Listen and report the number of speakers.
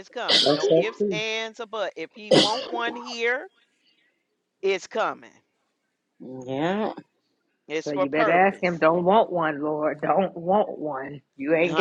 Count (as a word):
three